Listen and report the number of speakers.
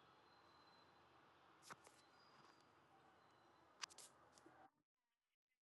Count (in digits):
0